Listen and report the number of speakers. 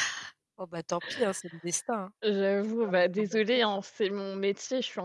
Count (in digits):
2